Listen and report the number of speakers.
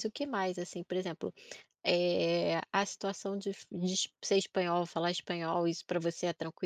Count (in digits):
1